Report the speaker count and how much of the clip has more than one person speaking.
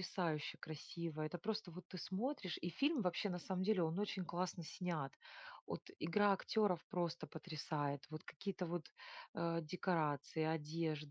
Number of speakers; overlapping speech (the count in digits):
1, no overlap